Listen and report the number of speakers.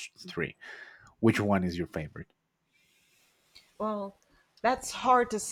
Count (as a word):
two